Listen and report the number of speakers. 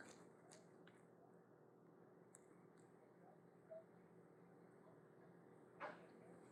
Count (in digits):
0